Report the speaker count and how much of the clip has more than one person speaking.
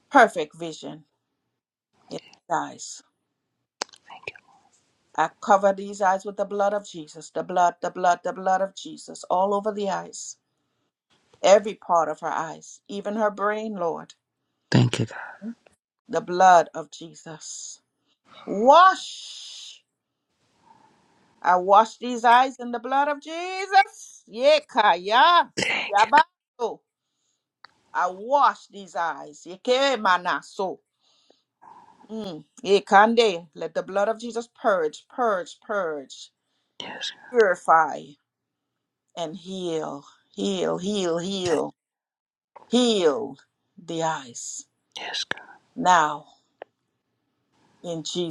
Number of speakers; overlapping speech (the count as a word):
two, about 1%